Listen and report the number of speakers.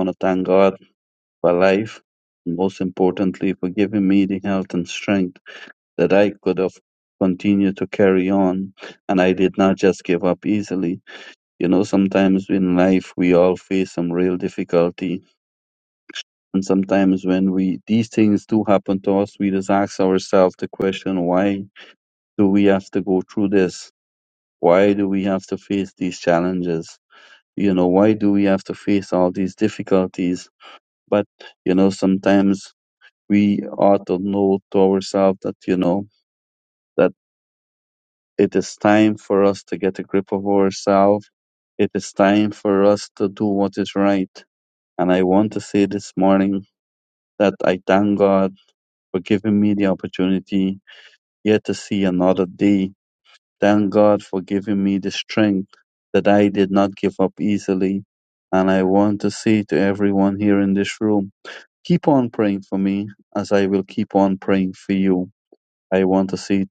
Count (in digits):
1